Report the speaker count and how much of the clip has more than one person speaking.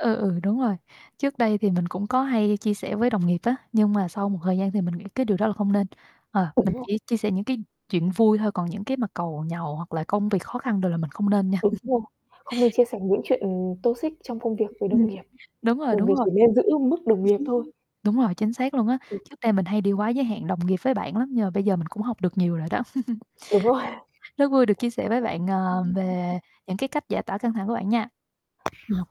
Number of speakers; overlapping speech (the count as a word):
two, about 6%